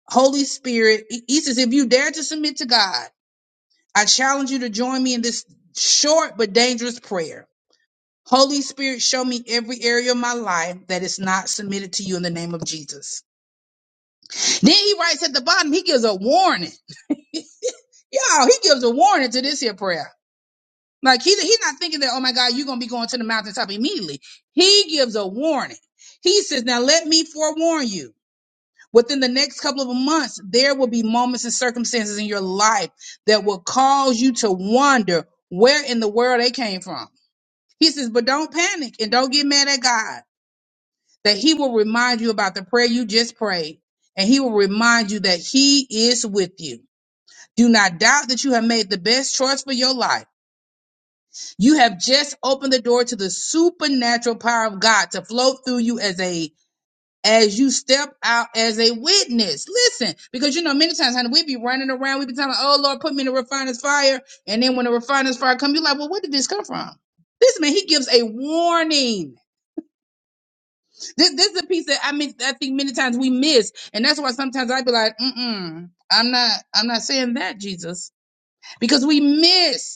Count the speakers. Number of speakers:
one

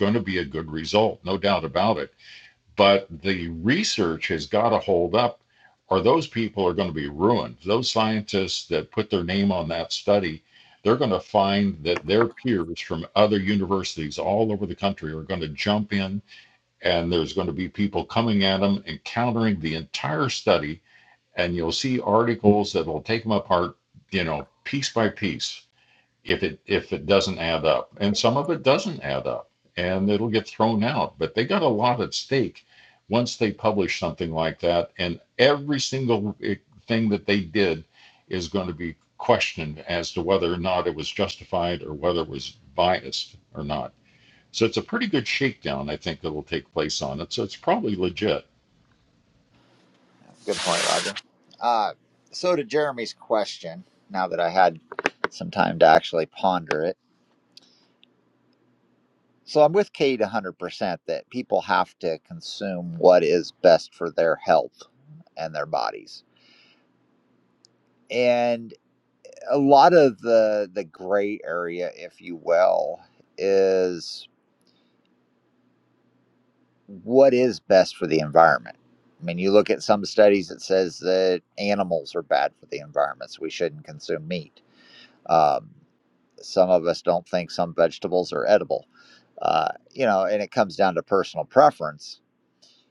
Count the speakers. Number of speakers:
two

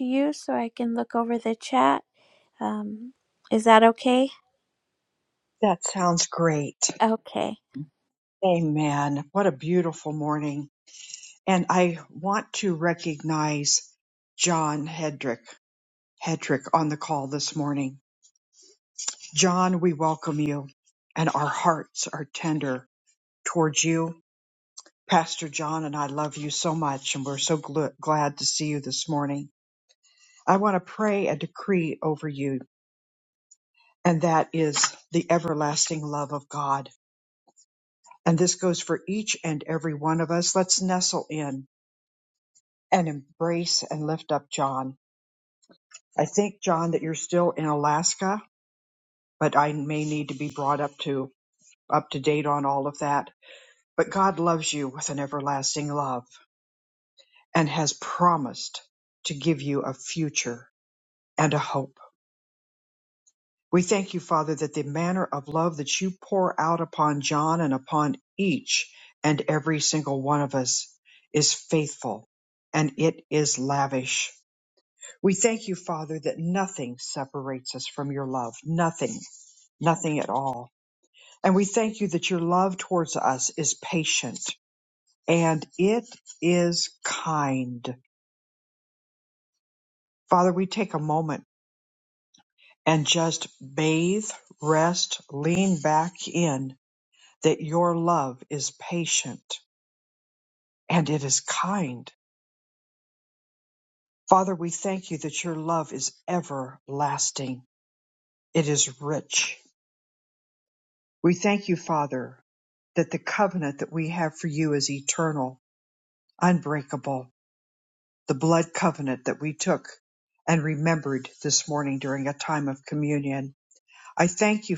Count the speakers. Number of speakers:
two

